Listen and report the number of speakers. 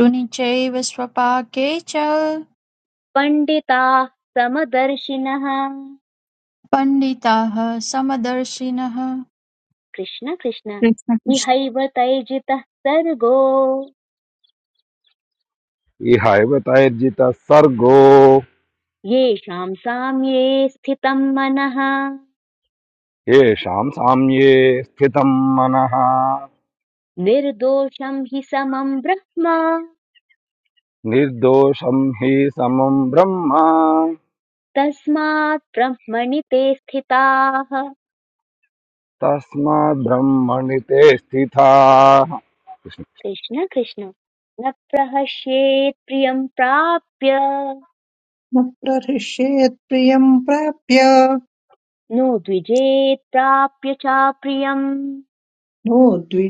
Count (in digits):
4